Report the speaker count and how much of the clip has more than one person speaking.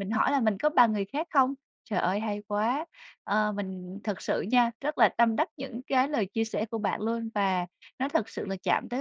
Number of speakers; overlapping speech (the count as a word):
one, no overlap